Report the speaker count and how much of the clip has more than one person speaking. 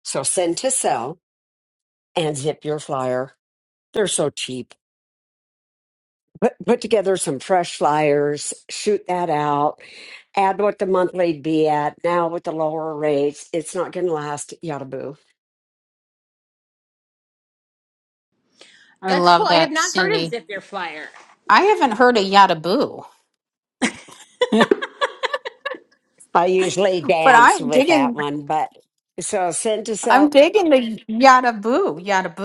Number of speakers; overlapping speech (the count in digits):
3, about 8%